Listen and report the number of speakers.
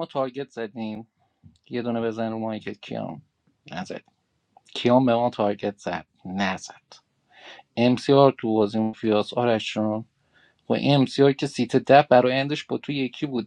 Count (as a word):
one